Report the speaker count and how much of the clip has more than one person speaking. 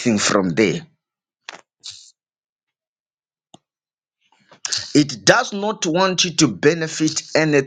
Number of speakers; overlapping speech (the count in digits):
1, no overlap